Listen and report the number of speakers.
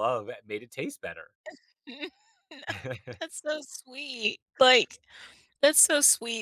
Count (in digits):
2